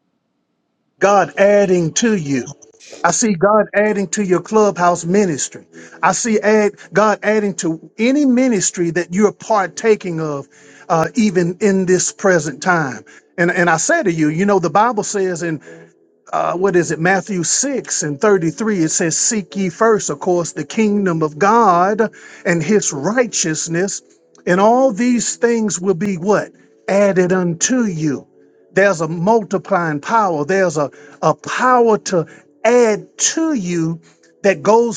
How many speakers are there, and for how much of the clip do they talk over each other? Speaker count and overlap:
one, no overlap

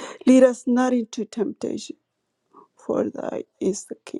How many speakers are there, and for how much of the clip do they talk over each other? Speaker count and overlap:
one, no overlap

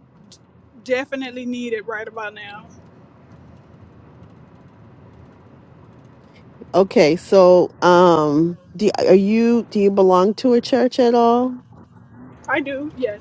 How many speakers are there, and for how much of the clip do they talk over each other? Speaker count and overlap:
two, no overlap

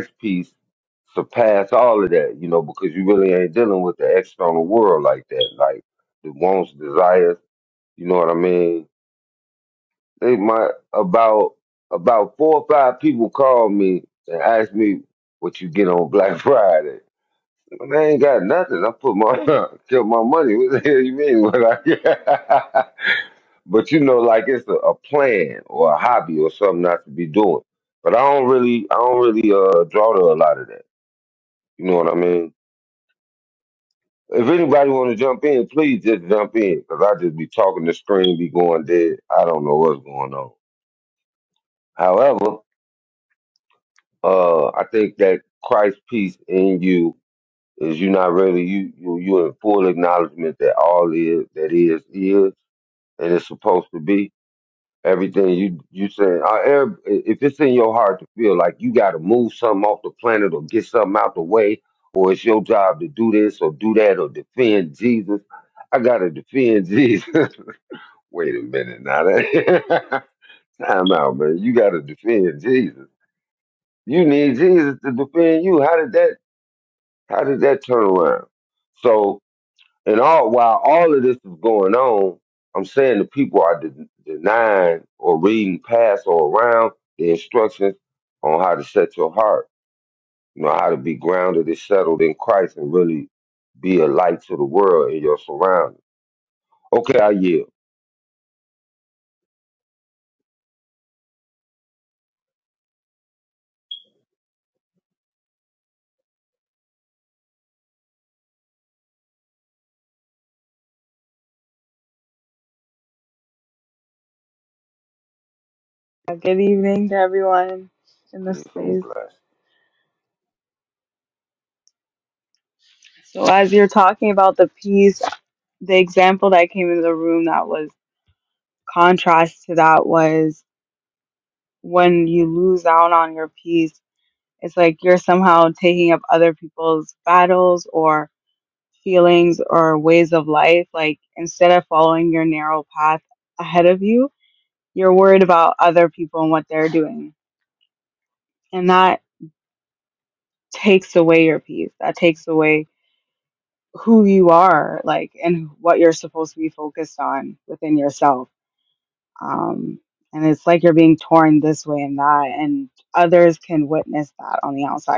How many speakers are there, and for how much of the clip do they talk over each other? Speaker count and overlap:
two, under 1%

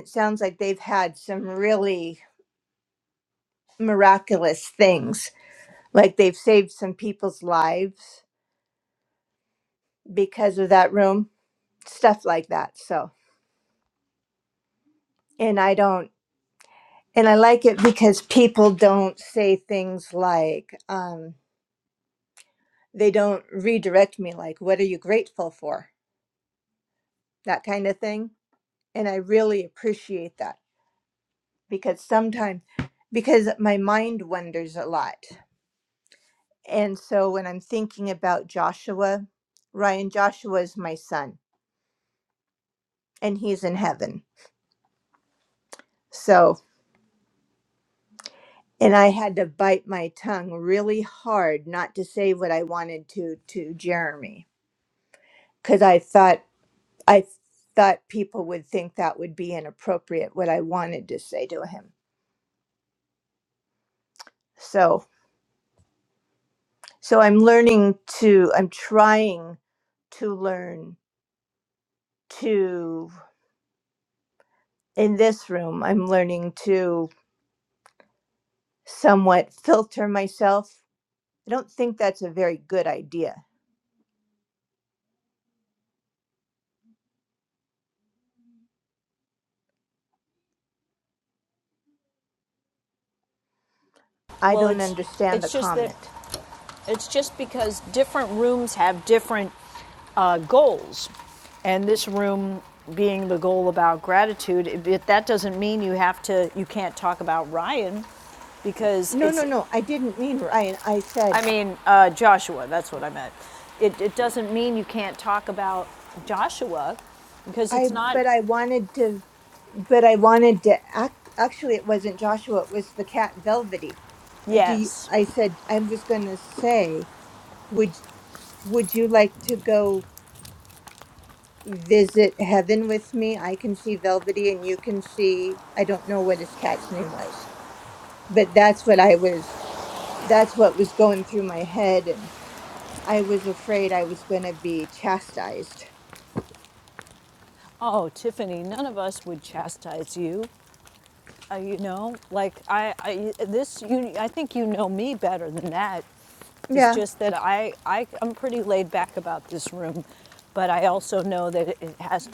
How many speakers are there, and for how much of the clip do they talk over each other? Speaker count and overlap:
two, about 2%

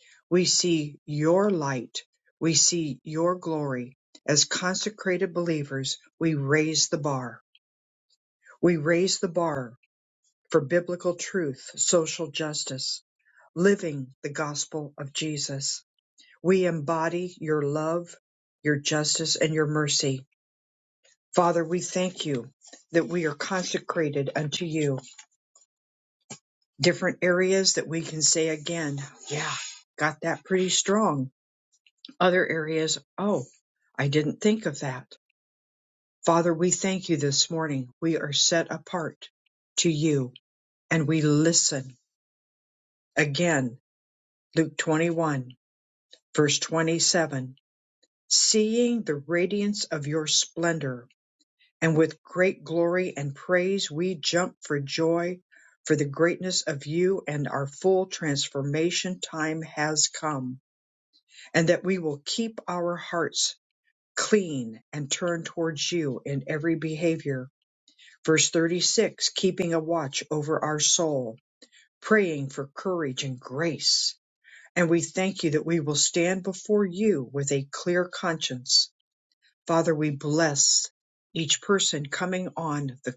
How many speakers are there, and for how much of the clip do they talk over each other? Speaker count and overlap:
one, no overlap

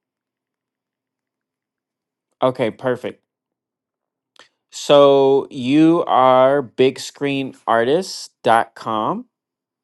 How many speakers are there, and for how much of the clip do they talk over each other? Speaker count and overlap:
one, no overlap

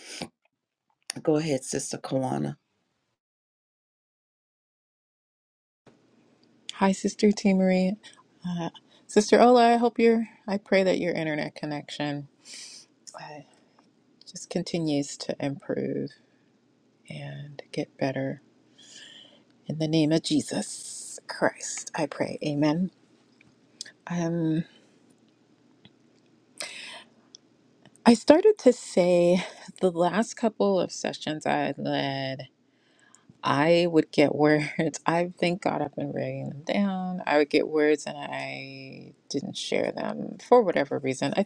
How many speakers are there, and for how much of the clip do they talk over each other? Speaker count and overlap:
two, no overlap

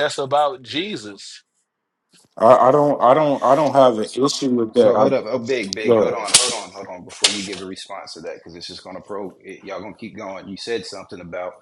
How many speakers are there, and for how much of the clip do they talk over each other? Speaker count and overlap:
three, about 6%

